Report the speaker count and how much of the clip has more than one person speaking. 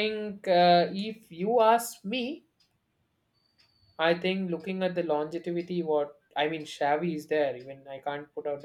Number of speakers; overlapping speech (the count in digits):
1, no overlap